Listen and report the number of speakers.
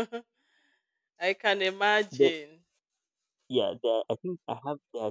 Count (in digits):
2